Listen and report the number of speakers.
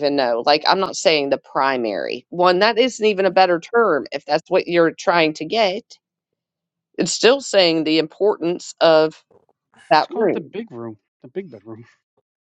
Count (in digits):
2